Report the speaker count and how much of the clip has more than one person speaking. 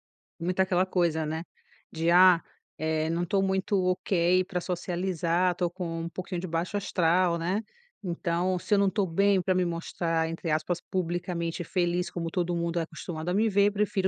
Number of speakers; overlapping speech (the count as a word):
one, no overlap